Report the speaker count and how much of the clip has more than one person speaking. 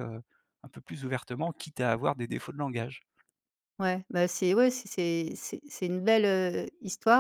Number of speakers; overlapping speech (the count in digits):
2, no overlap